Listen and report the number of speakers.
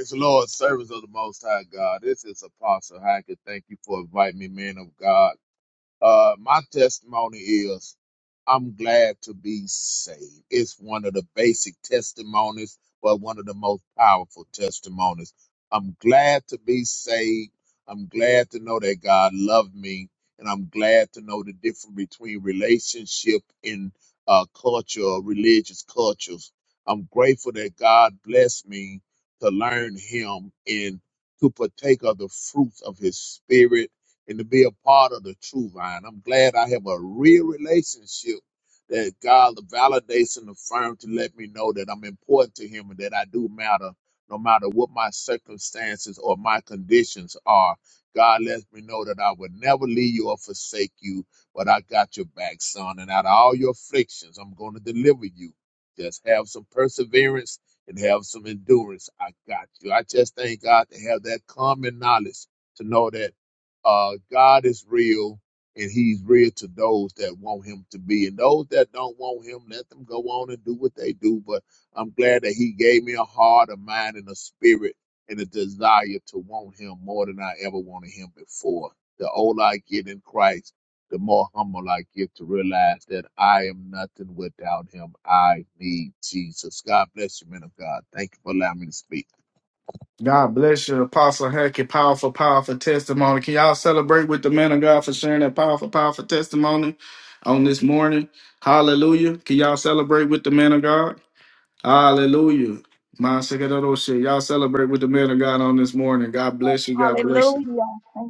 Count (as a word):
three